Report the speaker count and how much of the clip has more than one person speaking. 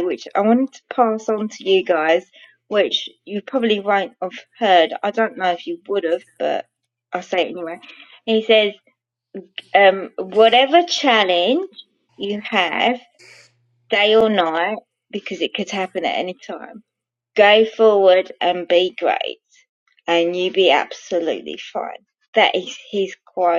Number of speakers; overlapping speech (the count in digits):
1, no overlap